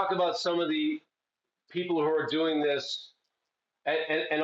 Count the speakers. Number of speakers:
1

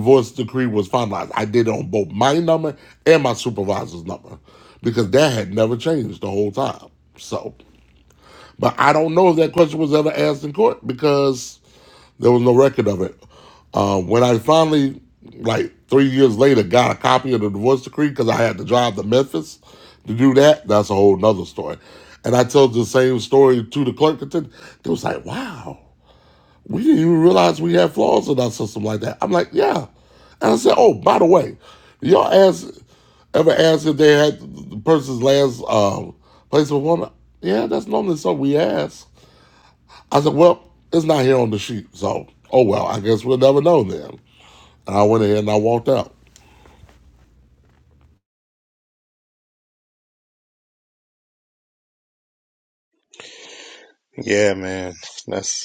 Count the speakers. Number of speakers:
2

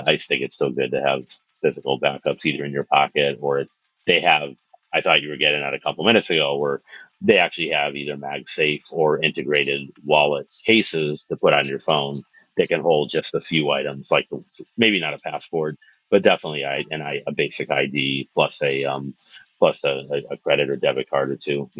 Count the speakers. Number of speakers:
1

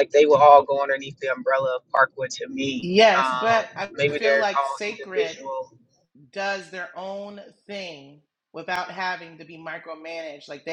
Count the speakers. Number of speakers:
2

